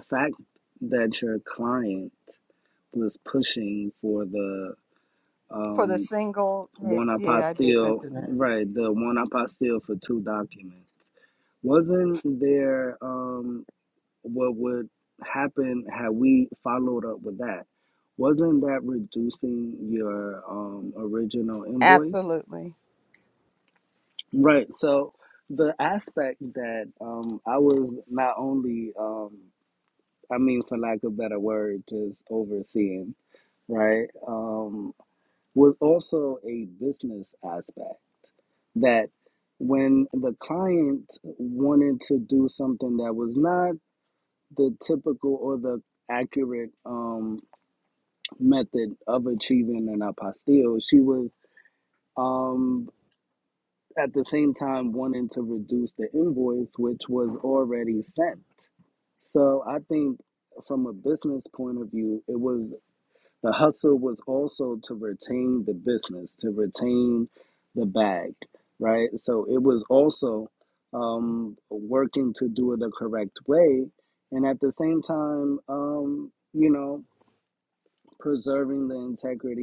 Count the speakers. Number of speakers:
2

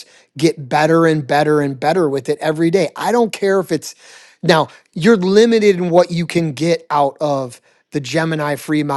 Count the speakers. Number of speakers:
1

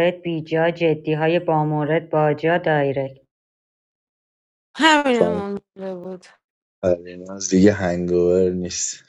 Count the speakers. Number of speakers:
3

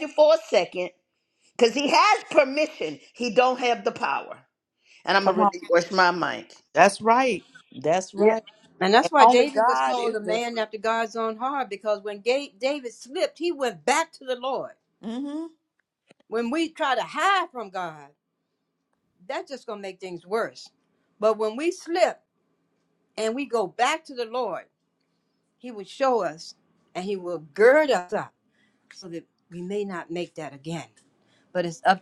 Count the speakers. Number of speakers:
3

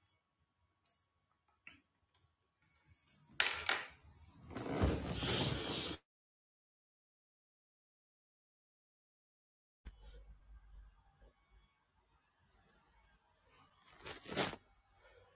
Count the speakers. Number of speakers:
0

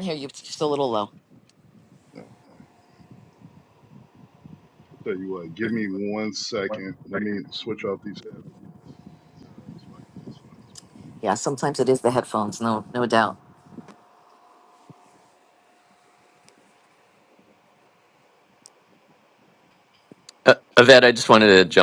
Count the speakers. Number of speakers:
3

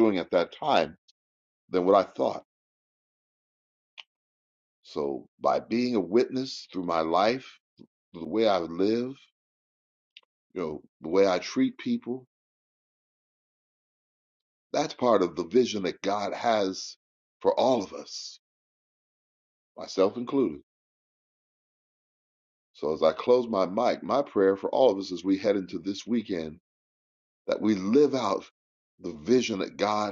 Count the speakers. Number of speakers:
1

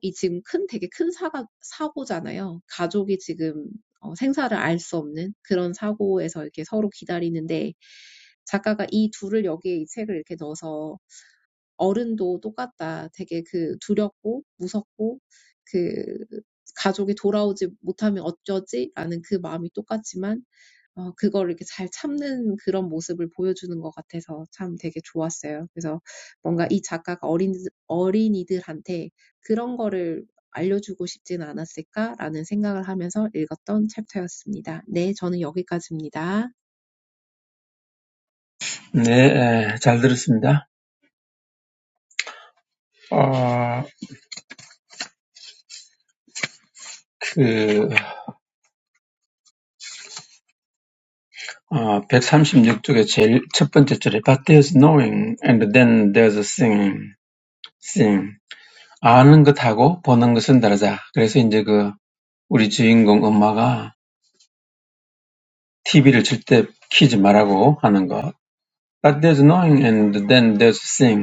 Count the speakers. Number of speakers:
2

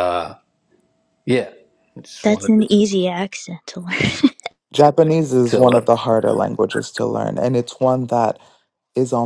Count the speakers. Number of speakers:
3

